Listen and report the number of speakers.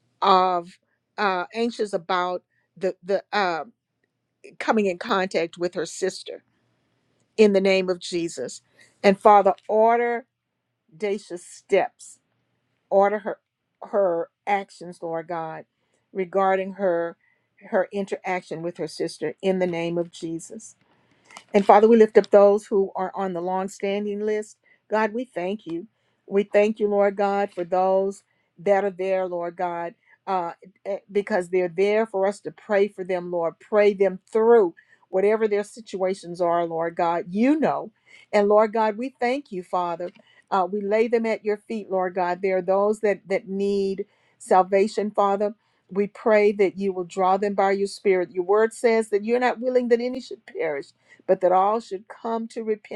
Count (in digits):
1